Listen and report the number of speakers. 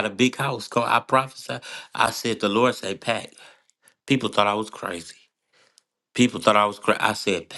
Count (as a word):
one